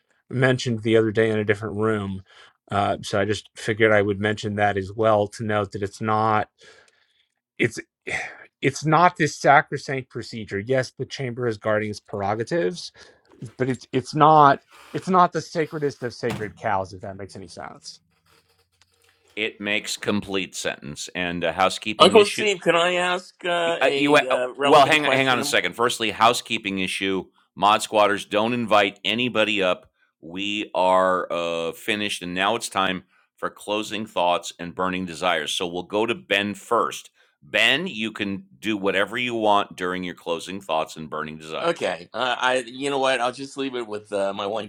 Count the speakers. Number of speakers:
3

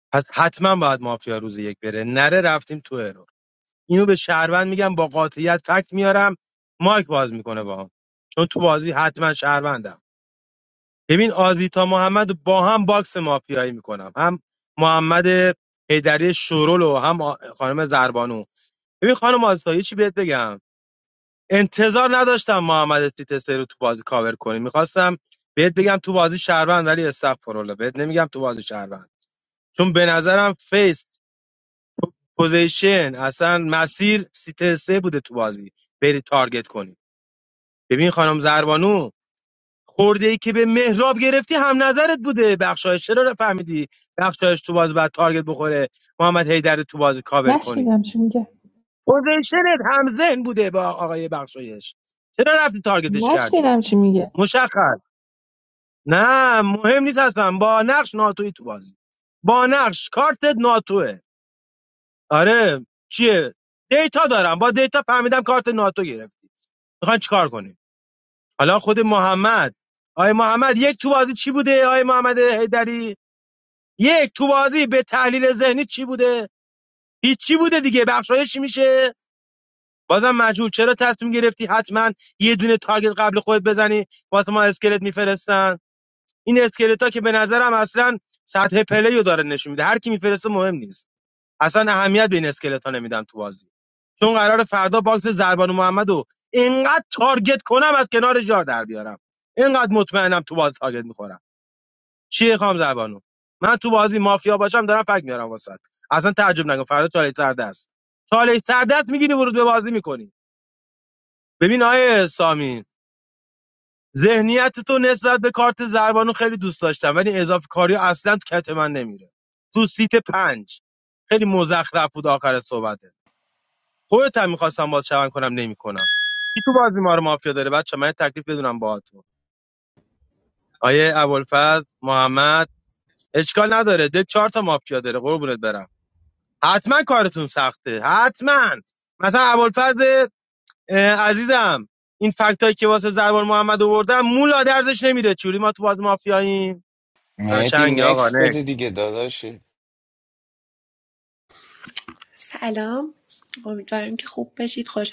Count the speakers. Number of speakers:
4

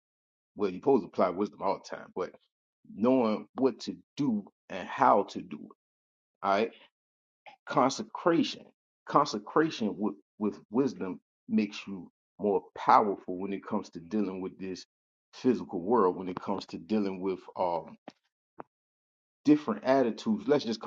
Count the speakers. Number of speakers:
1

